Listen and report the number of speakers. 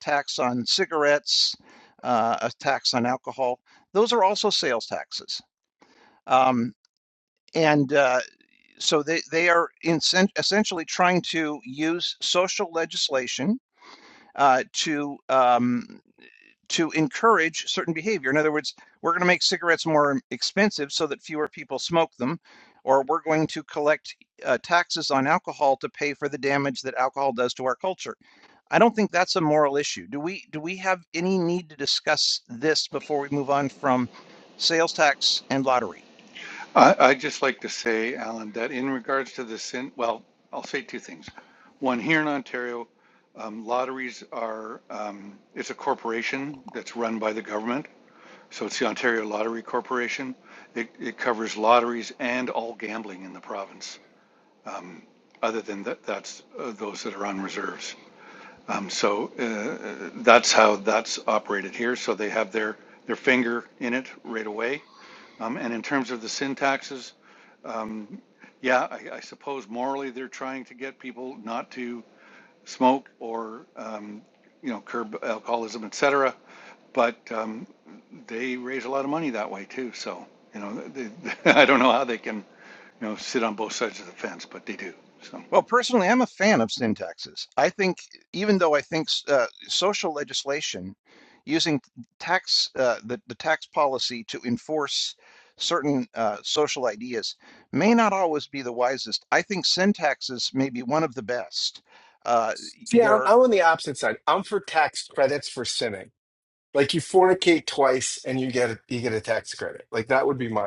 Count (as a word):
three